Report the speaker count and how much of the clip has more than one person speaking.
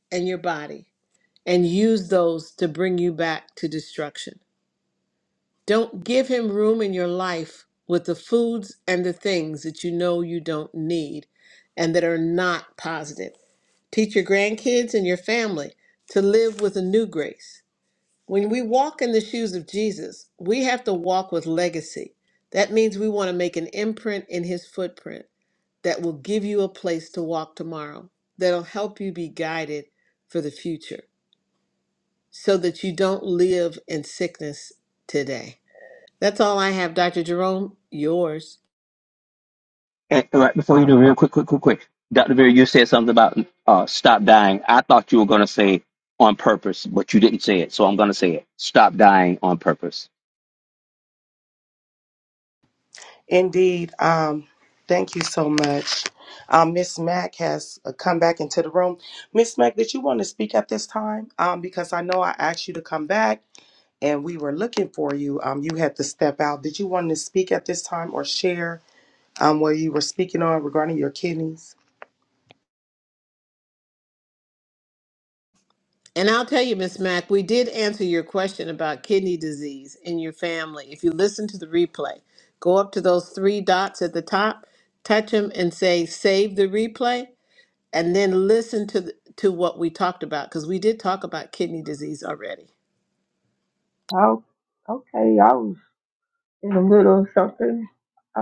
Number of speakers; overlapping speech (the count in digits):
4, no overlap